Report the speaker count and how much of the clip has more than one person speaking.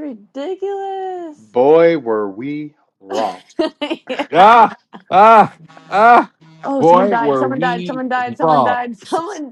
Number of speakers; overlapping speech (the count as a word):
three, about 16%